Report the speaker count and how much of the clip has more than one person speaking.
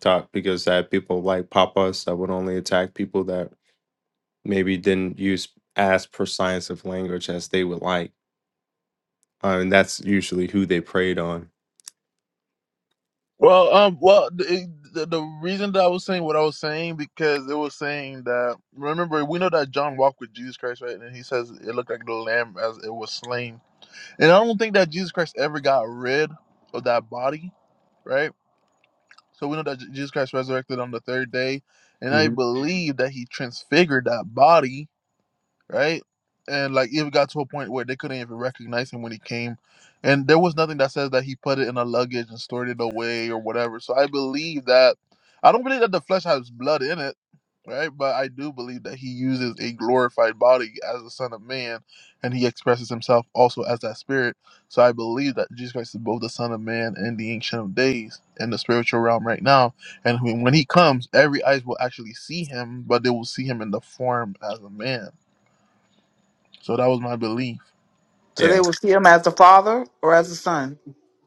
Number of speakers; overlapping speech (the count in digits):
3, about 1%